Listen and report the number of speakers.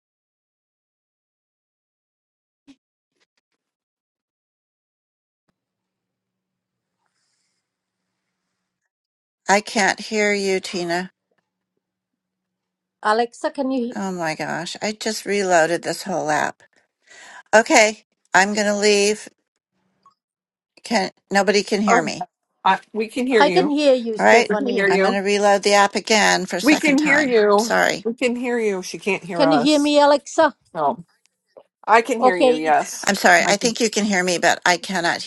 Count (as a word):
three